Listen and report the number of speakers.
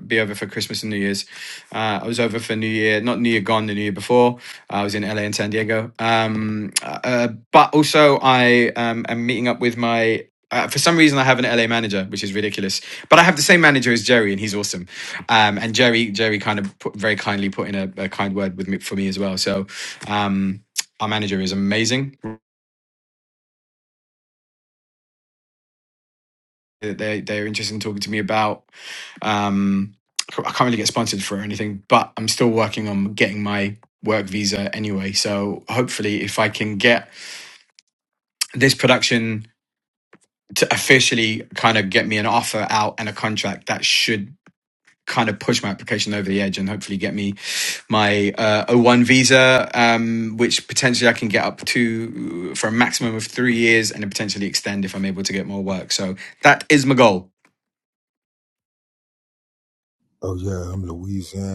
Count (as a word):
two